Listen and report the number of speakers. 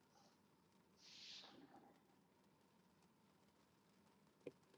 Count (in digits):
0